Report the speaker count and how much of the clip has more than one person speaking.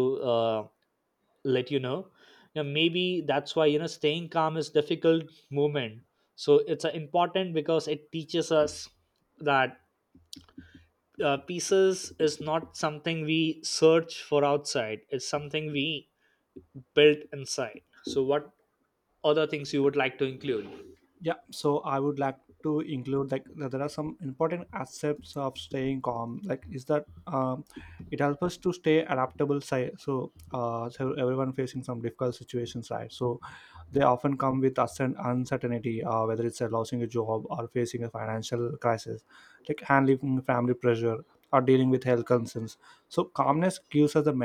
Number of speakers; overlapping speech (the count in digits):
2, no overlap